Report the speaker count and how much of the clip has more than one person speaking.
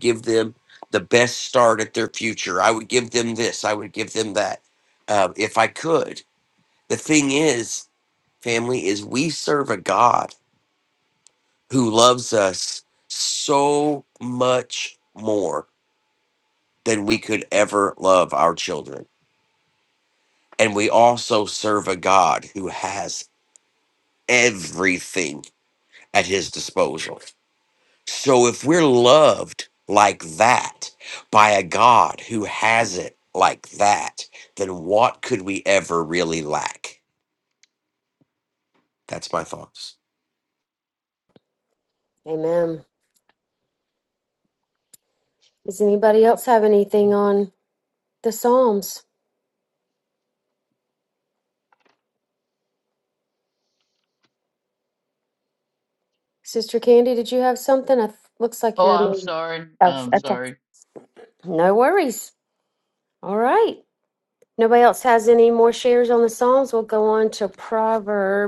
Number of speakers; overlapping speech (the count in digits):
3, under 1%